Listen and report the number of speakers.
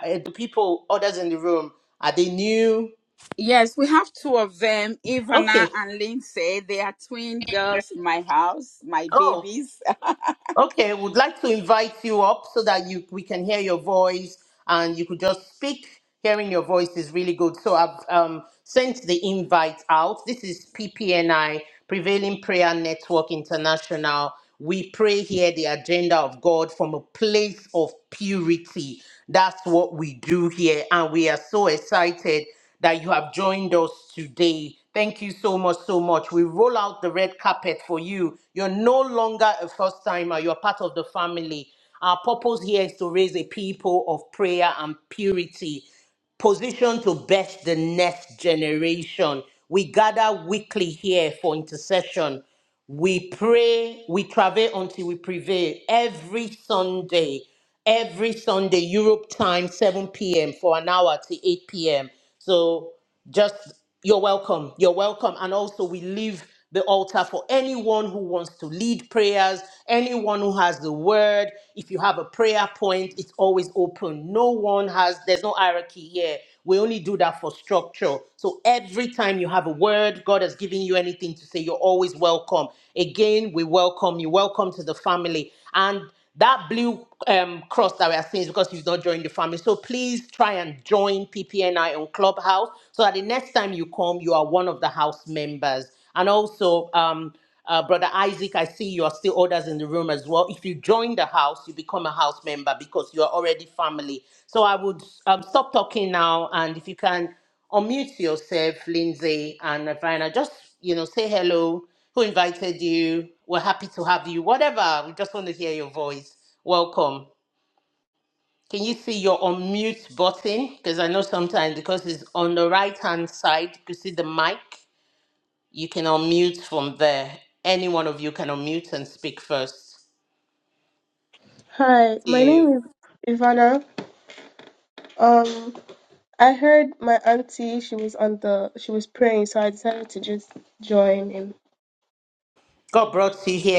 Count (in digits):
3